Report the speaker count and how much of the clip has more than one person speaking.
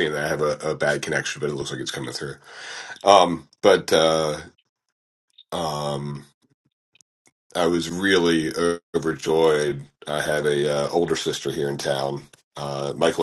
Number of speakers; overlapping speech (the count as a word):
one, no overlap